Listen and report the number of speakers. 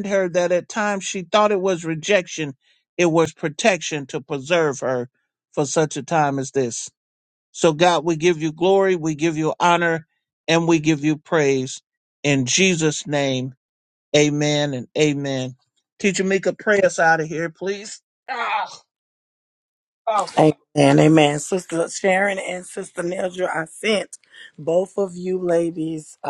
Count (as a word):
two